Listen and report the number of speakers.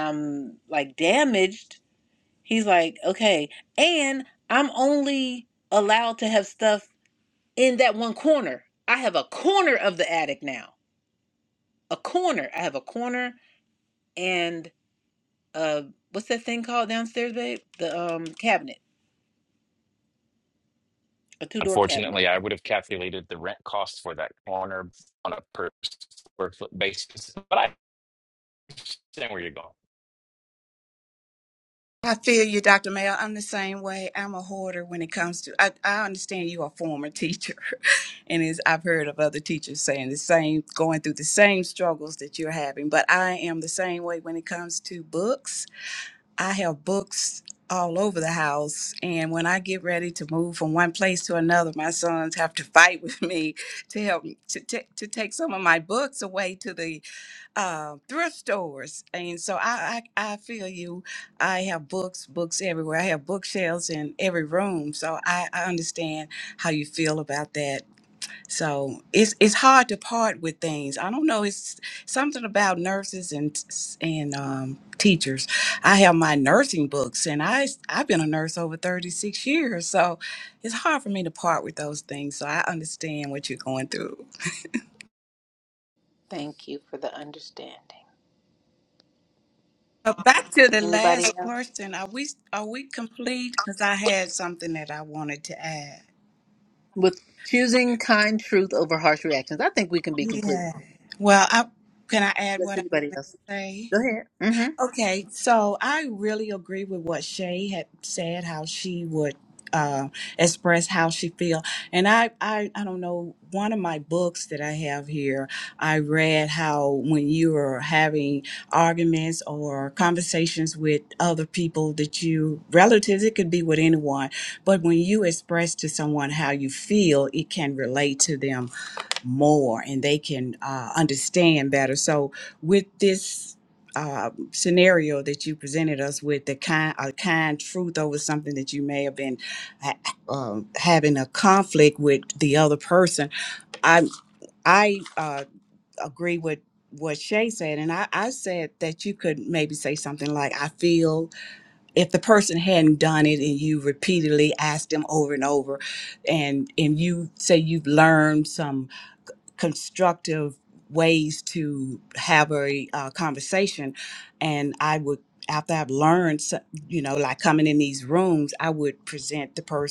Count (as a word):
three